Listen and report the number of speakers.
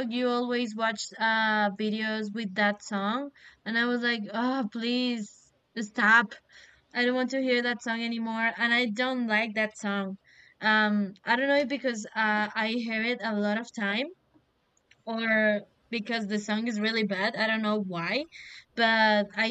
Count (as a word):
one